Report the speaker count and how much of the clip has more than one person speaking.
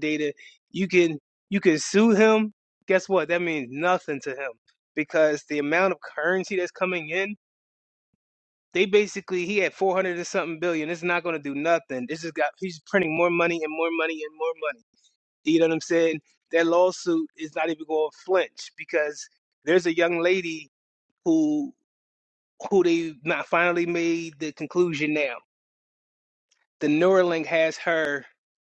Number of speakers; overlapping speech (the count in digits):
1, no overlap